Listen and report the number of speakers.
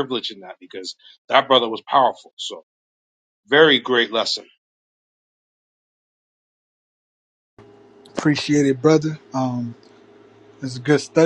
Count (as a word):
two